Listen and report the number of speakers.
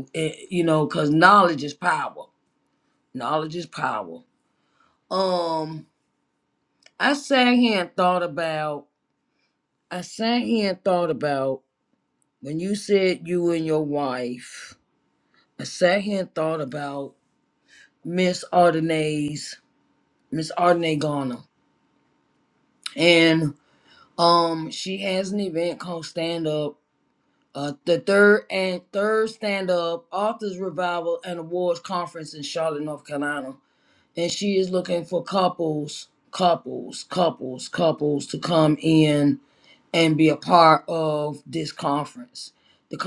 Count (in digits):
1